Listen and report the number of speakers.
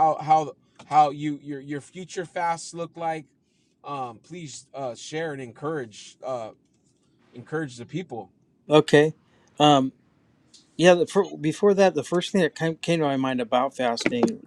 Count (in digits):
2